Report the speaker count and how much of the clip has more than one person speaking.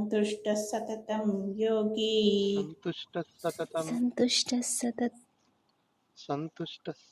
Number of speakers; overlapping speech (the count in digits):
3, about 2%